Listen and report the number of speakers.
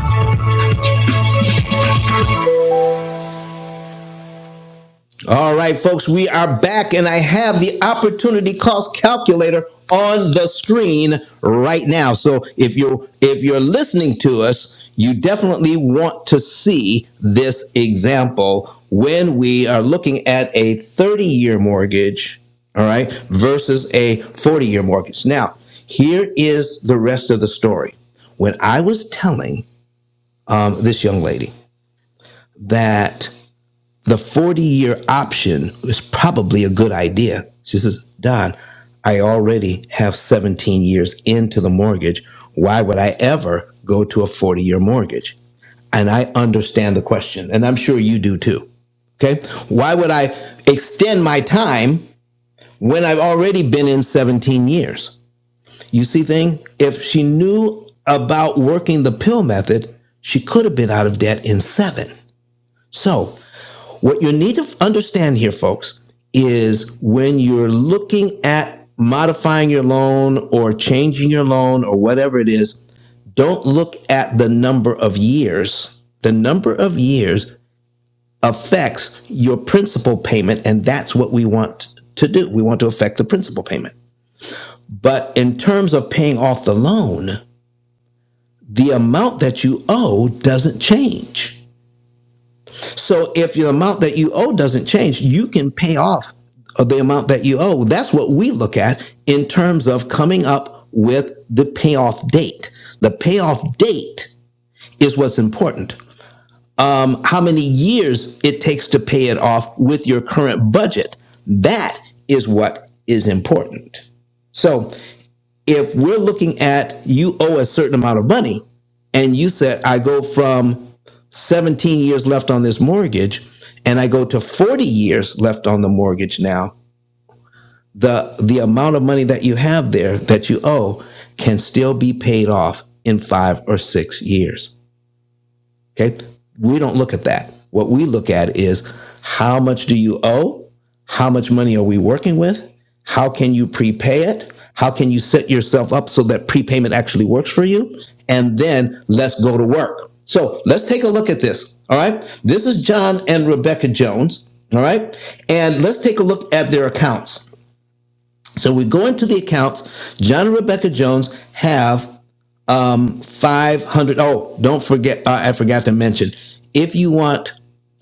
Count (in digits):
1